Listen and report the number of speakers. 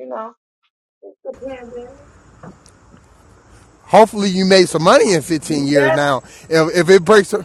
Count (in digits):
2